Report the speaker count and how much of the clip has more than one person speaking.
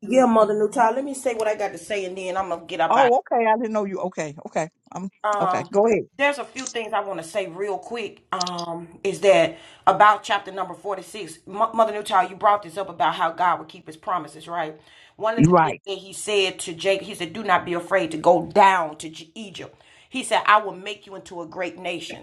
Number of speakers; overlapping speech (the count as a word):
two, about 5%